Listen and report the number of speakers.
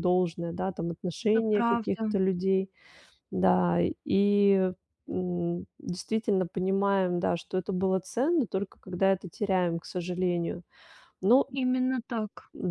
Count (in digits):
2